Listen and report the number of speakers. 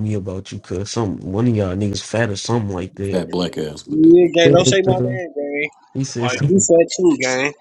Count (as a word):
three